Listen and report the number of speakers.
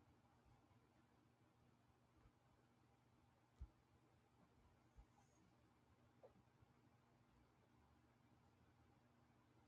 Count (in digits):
0